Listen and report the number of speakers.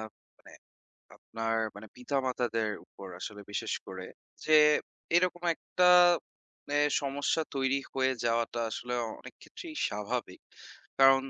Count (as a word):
one